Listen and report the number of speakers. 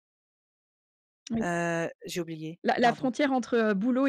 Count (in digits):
2